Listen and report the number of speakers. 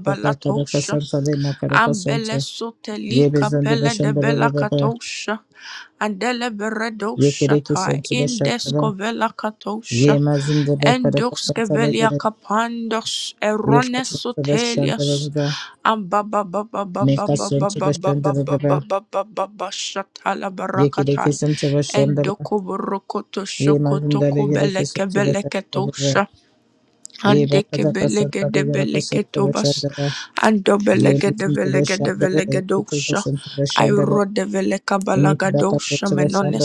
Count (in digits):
2